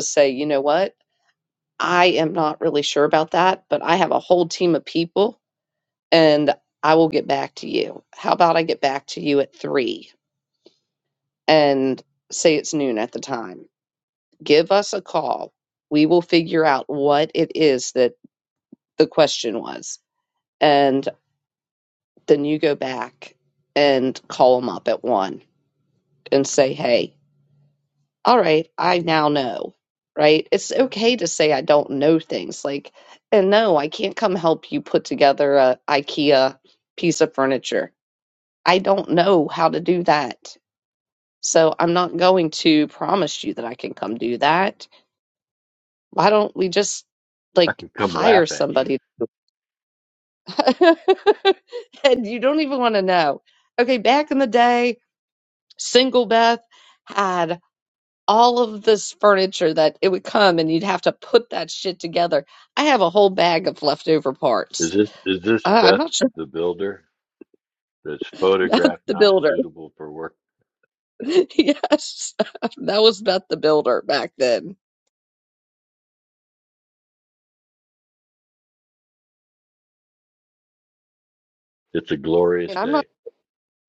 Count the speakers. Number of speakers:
2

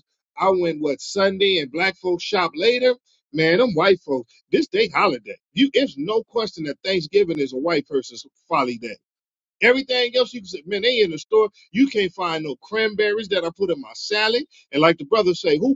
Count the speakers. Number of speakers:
1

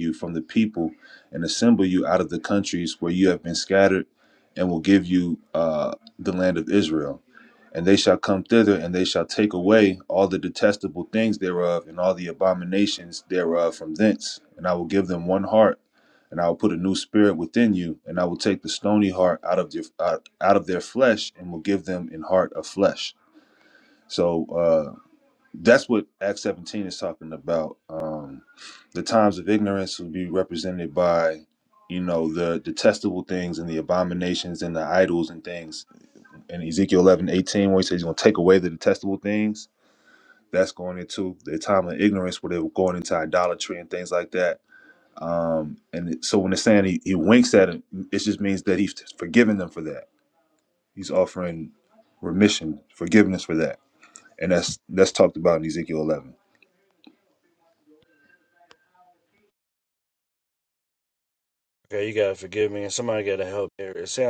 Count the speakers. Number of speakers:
2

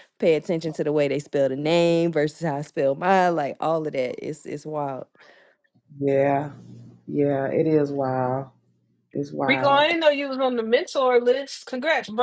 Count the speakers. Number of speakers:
3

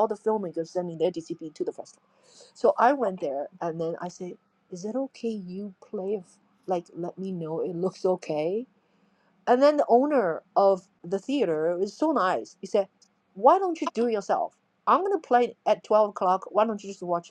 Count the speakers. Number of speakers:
1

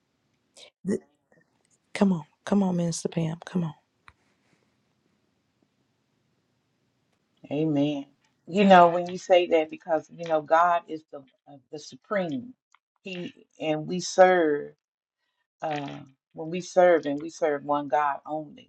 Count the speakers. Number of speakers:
2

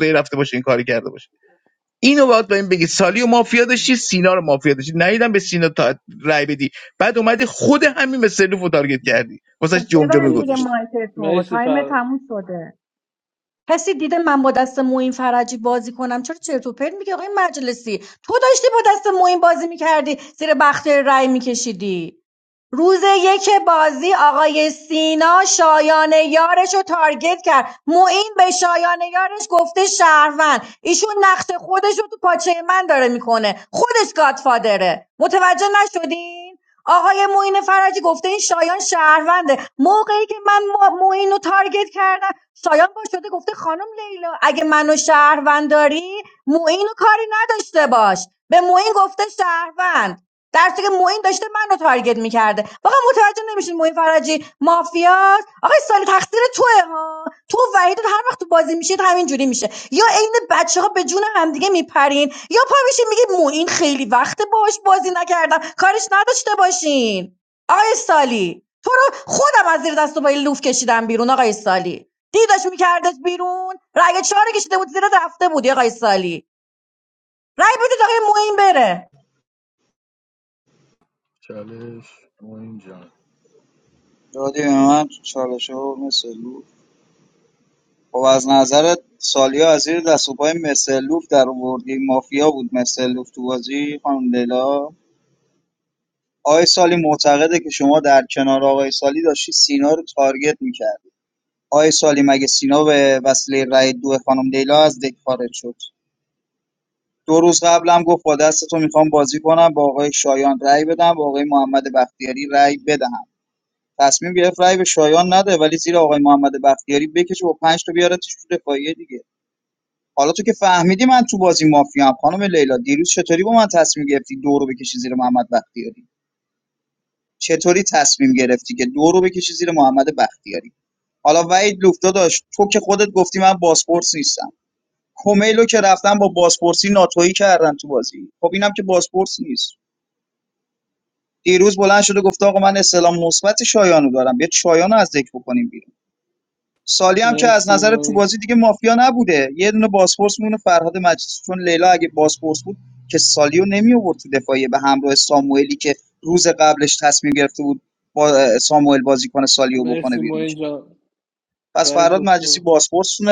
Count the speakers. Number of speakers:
5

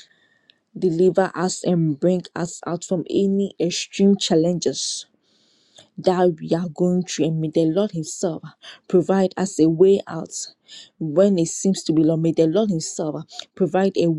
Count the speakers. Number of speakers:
1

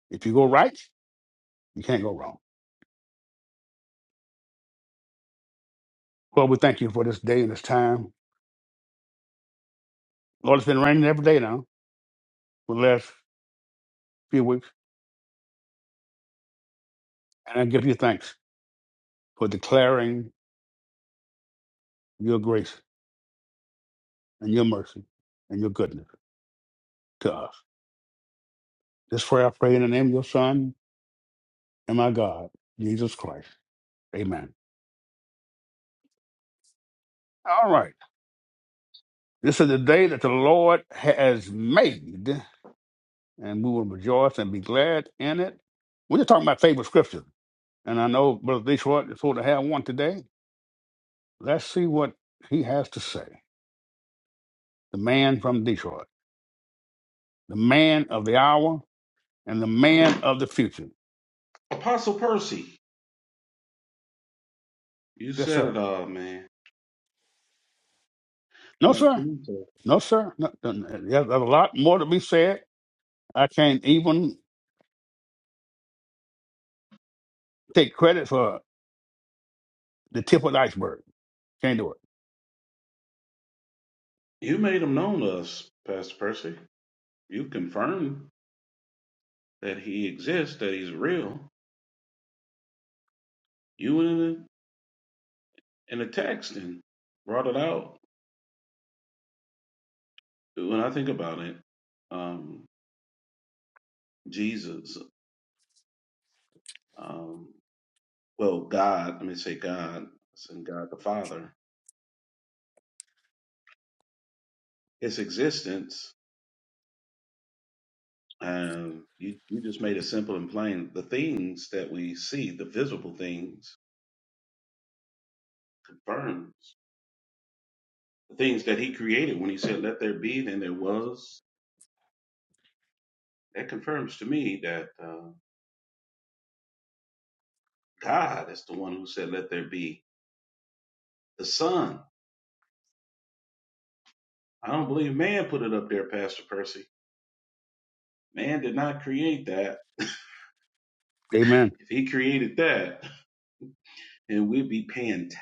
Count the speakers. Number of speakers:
2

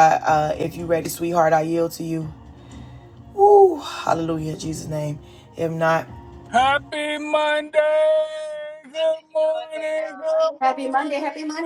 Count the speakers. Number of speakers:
3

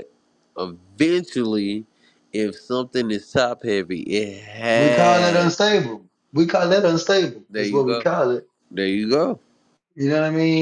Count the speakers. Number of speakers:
2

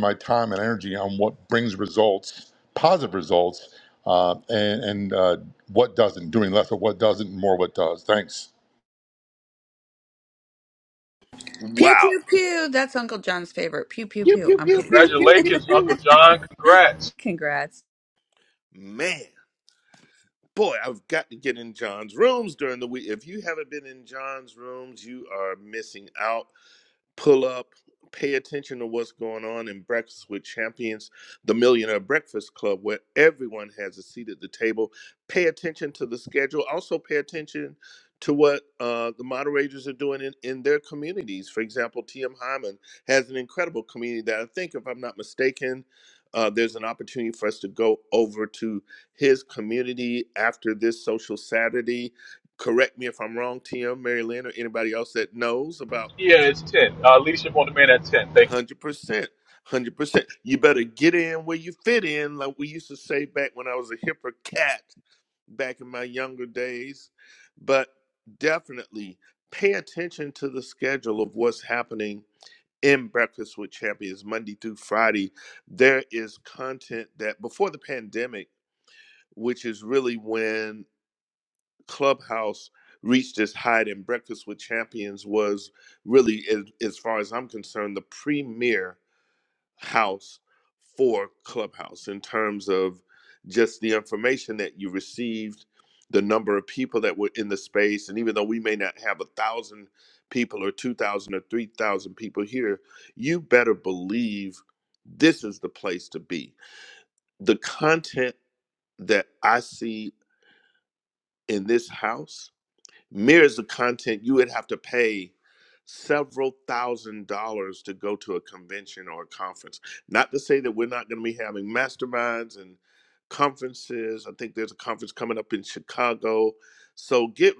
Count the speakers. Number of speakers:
4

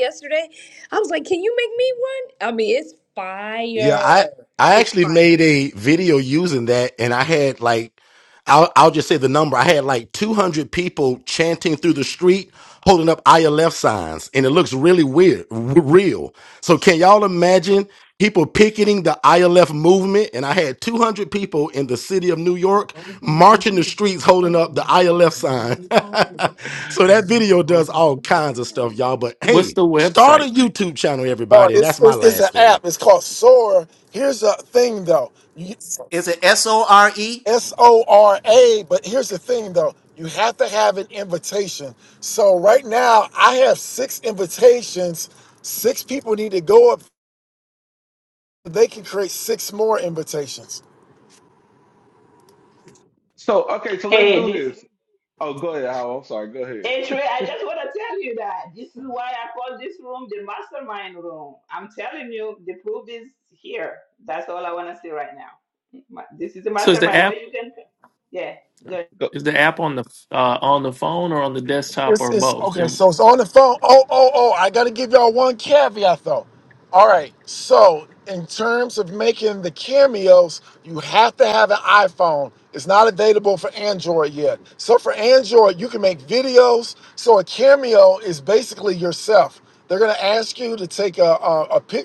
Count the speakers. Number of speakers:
7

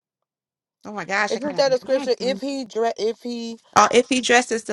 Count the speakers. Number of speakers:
2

